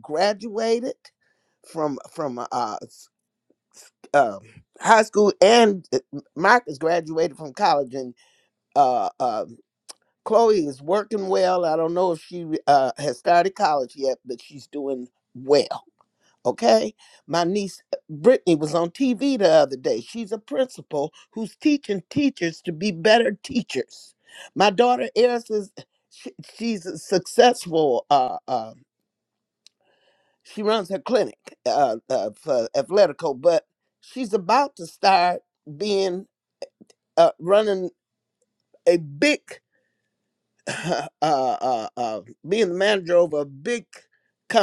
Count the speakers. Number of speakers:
one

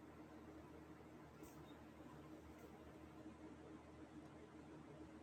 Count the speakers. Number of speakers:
zero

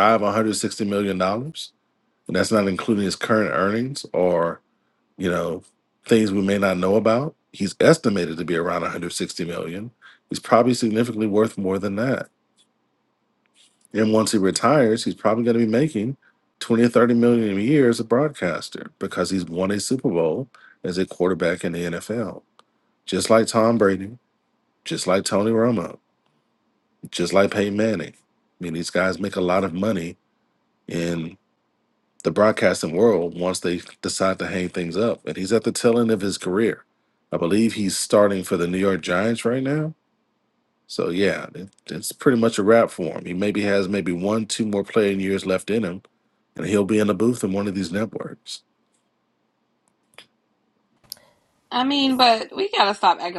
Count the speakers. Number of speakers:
two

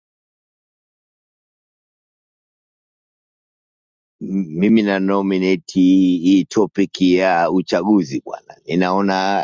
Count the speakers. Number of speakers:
one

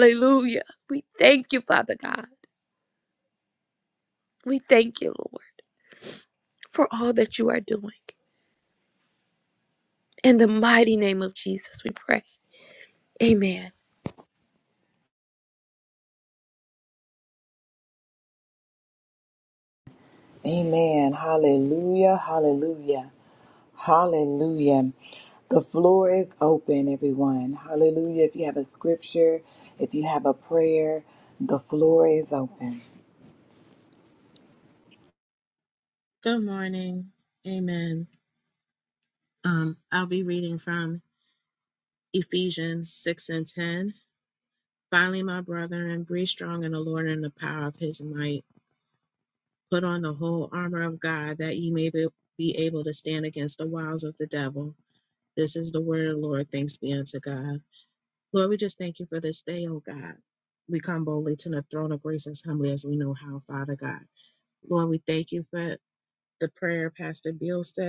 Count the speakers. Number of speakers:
three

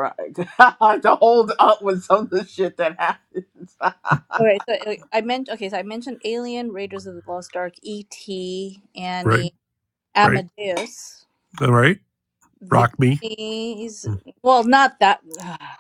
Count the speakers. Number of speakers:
three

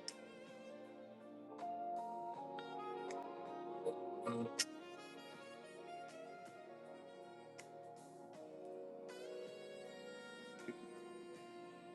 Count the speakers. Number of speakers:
zero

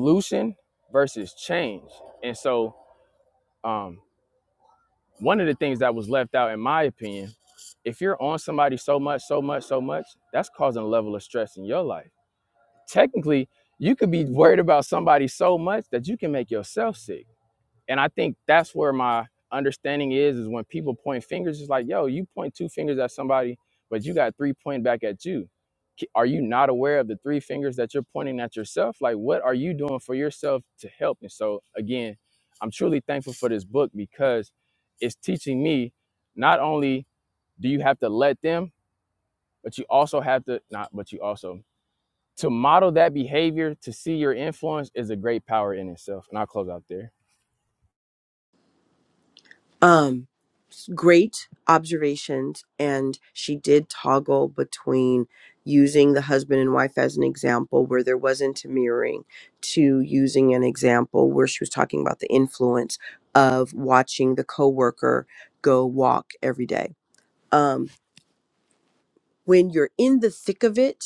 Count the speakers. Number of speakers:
two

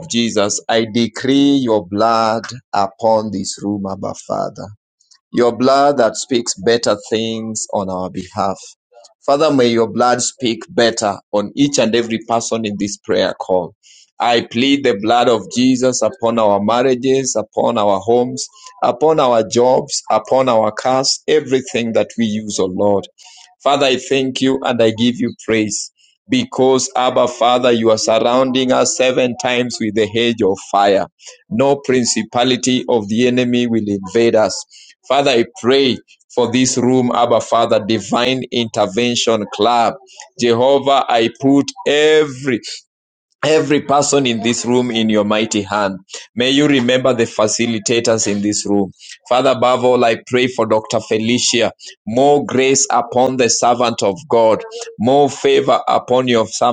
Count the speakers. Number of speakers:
one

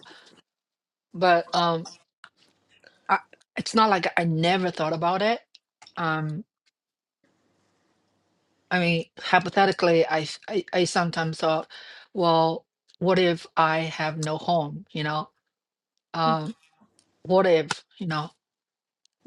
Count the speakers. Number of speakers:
one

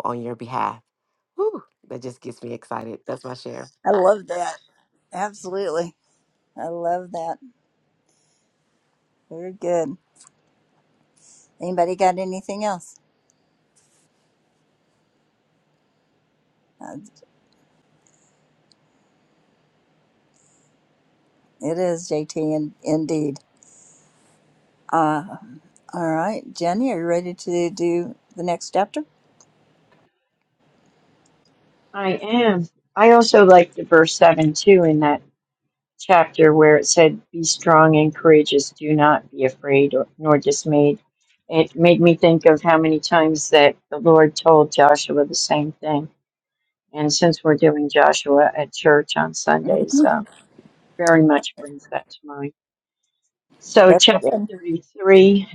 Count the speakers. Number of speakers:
three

